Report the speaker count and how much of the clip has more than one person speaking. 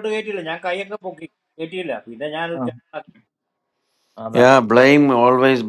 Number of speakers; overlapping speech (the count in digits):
2, no overlap